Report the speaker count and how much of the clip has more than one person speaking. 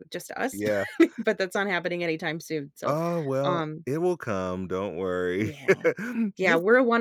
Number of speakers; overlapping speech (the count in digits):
2, about 16%